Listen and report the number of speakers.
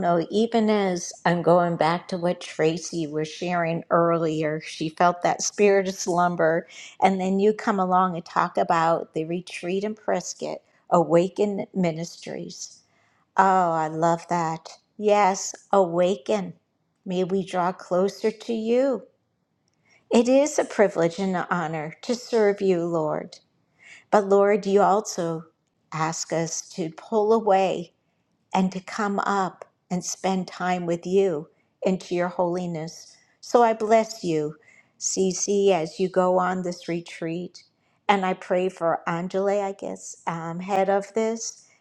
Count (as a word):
one